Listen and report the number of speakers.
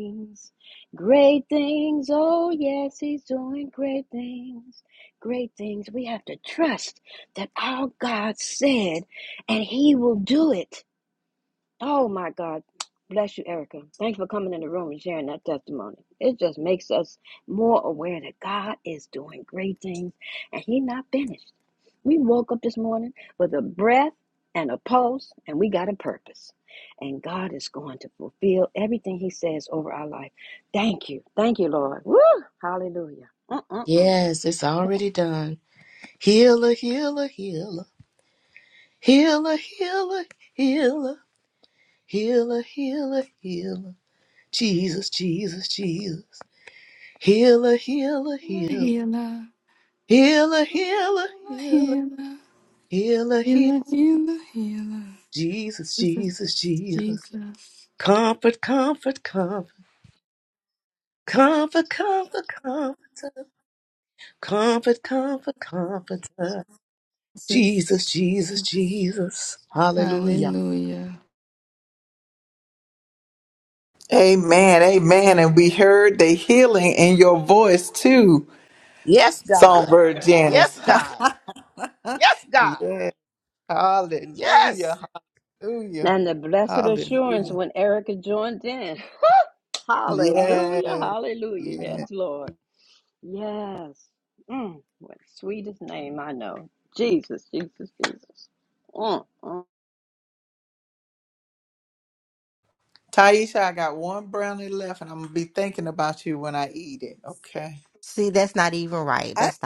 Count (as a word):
five